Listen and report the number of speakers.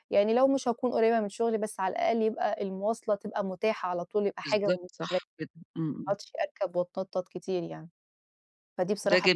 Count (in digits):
2